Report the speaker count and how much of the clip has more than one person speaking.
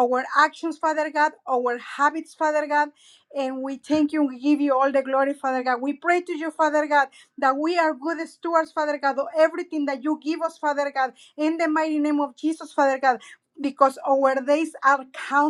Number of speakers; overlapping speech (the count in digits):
1, no overlap